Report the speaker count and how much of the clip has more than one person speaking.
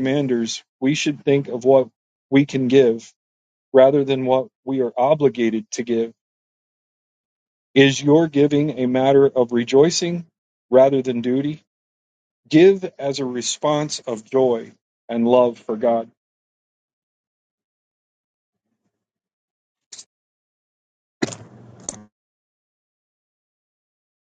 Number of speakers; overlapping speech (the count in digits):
1, no overlap